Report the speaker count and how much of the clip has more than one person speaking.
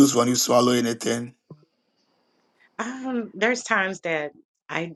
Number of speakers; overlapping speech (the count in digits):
2, no overlap